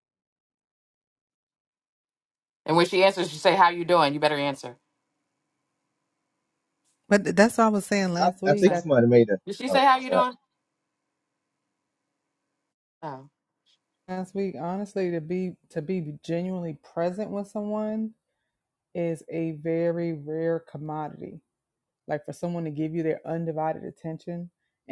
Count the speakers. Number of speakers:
3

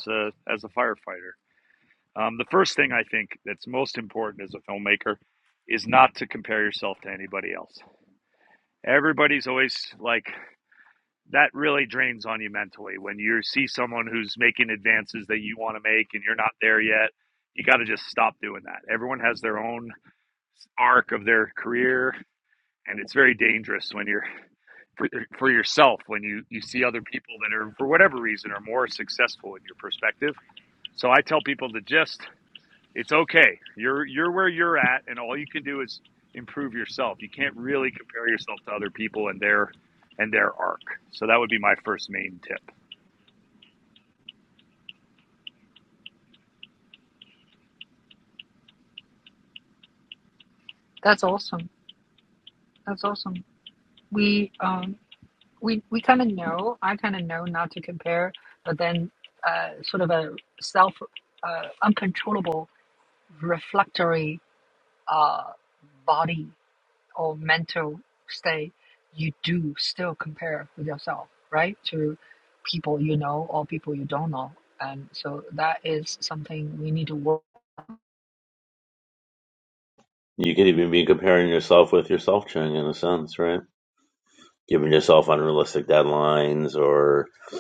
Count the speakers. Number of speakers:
3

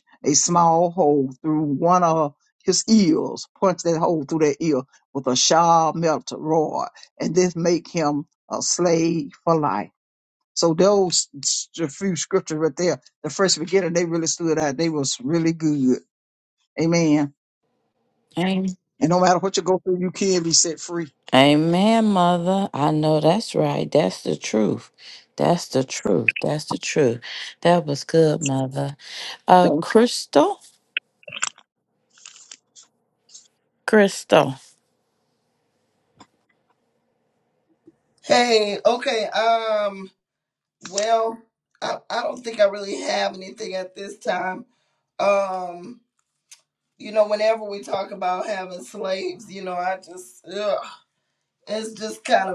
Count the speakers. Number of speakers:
3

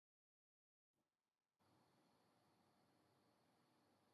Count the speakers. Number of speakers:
0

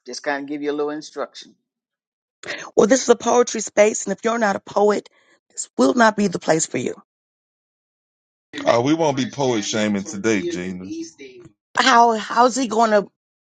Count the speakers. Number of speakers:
3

